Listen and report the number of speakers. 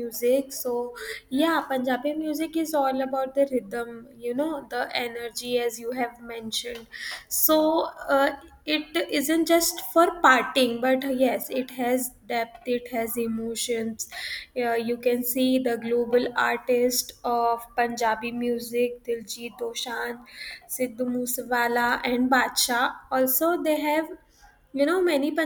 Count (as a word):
one